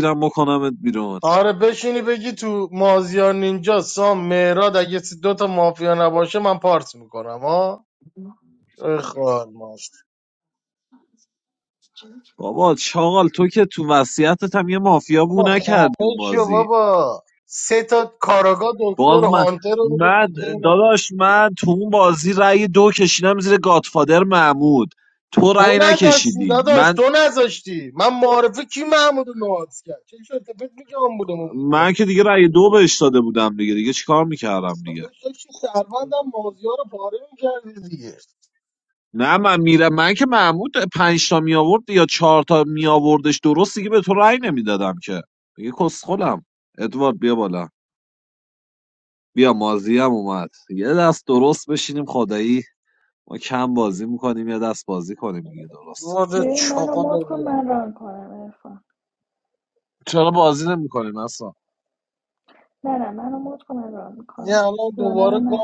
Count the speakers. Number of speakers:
three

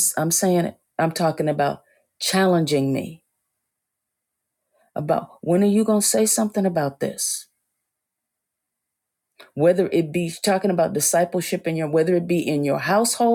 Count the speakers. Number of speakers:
one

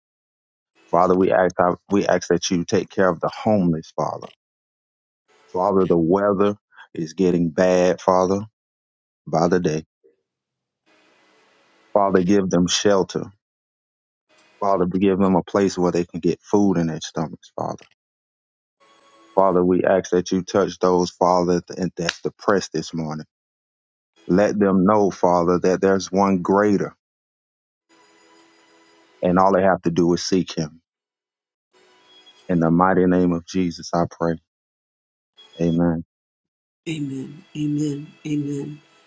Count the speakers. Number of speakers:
two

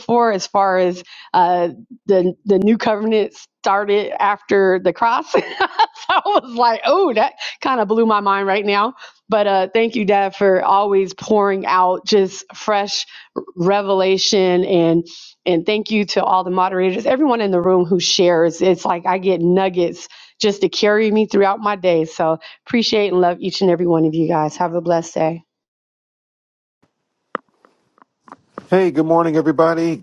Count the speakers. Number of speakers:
two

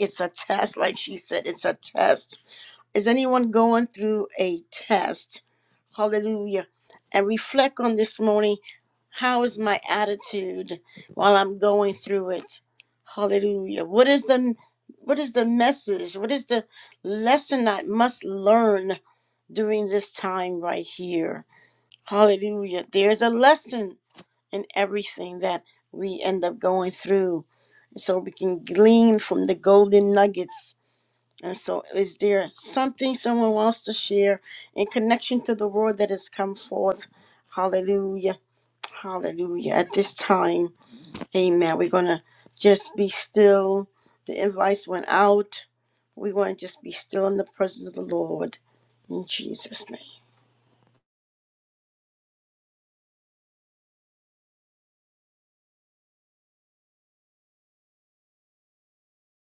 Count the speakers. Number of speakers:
one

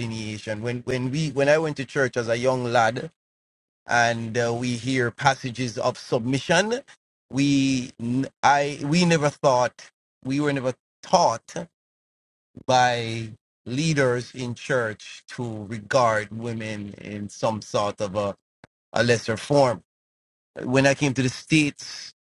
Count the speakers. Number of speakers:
one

